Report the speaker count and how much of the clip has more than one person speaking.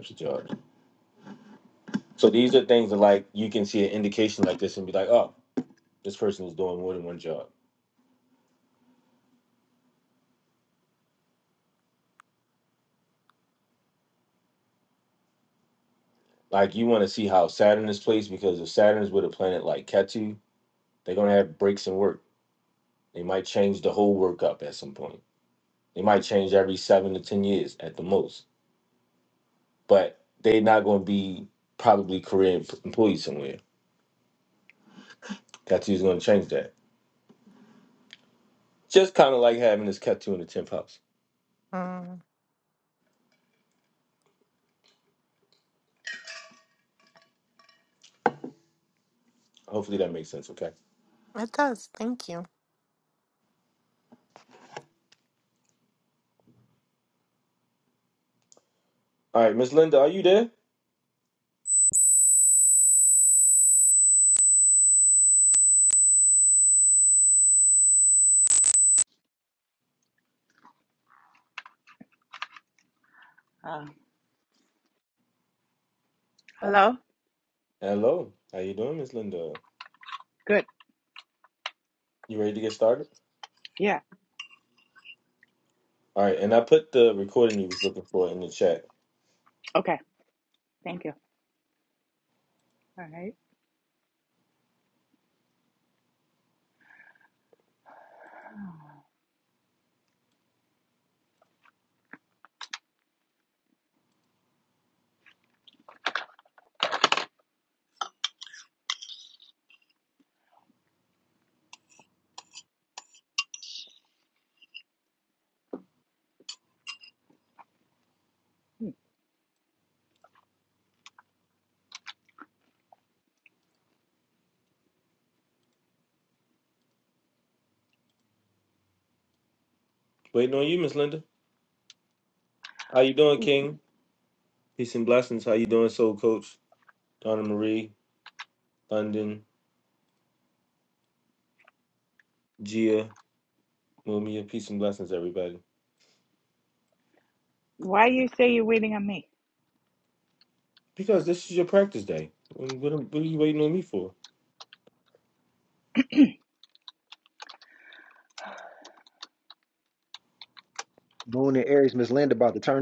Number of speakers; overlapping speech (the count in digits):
4, no overlap